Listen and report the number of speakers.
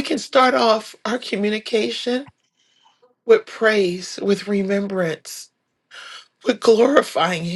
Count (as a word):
one